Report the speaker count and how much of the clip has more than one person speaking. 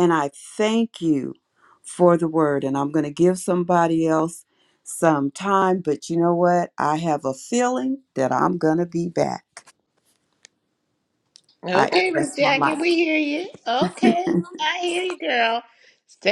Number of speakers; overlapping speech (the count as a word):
two, about 7%